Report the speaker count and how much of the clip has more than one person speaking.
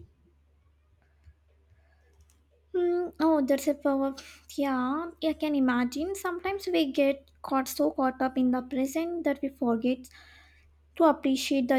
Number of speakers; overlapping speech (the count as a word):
one, no overlap